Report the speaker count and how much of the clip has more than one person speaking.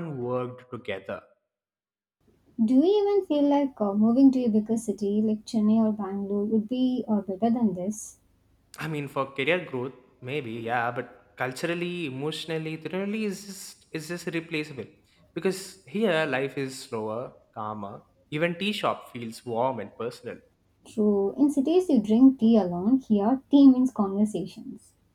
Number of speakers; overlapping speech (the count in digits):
2, no overlap